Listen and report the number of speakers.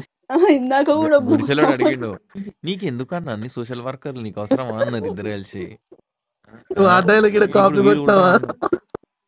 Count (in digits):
3